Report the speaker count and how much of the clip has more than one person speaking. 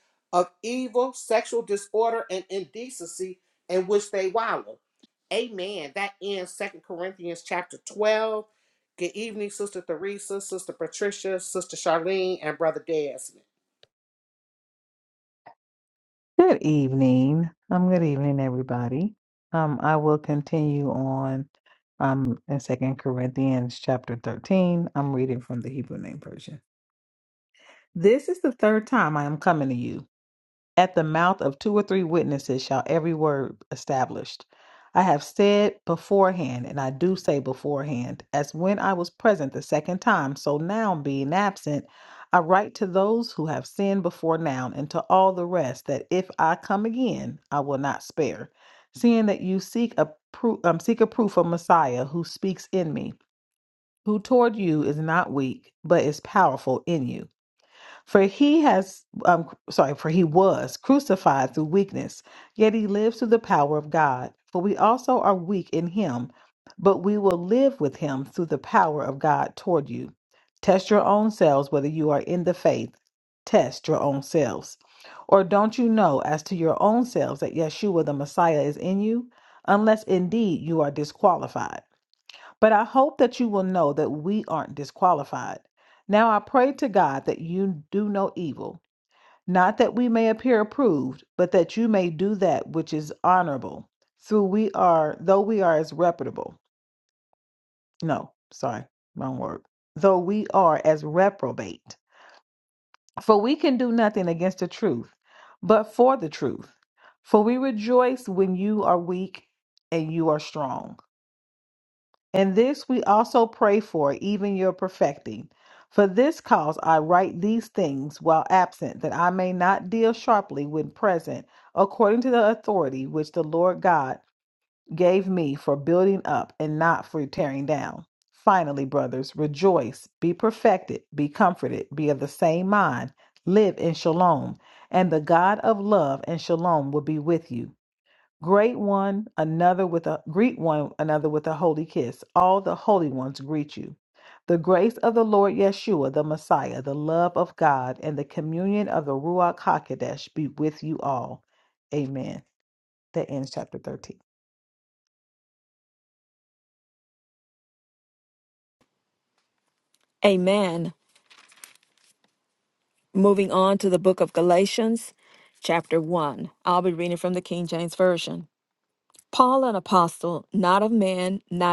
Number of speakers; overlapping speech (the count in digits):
3, no overlap